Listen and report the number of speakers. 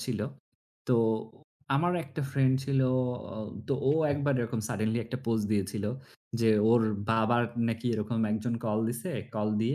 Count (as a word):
one